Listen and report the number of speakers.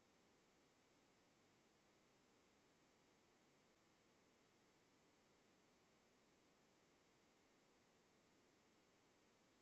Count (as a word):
zero